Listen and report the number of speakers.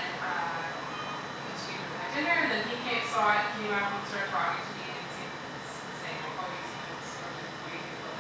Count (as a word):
one